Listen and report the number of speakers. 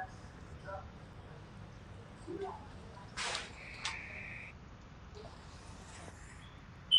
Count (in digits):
0